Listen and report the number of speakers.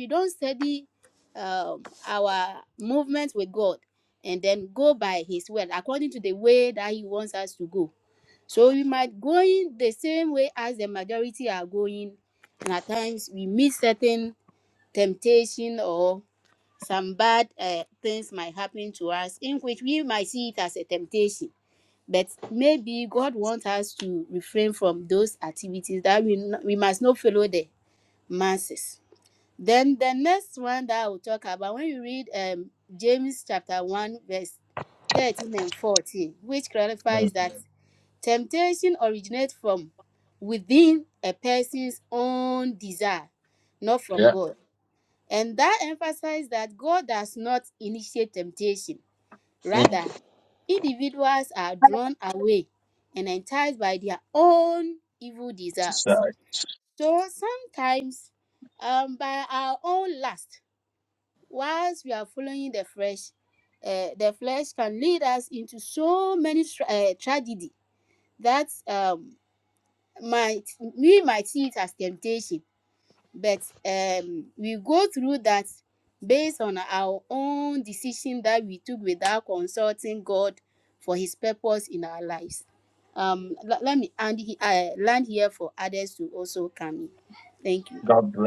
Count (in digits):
2